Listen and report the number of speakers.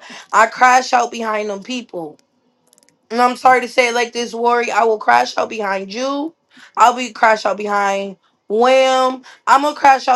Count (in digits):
1